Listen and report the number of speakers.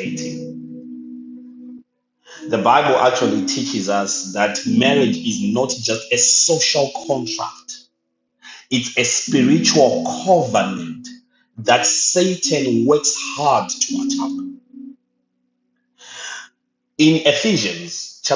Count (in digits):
1